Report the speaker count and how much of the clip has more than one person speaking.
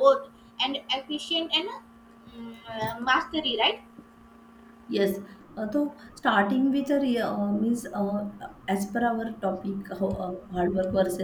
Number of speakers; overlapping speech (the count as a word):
two, no overlap